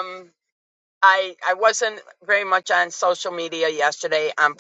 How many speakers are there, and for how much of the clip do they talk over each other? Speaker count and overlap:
one, no overlap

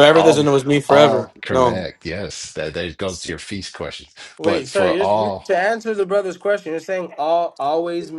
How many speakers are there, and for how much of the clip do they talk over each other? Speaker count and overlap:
three, about 29%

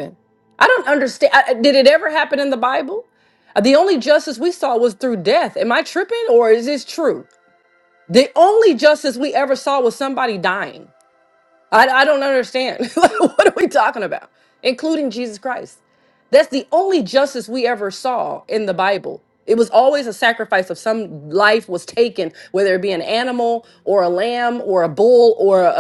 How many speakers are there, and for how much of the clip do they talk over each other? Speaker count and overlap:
one, no overlap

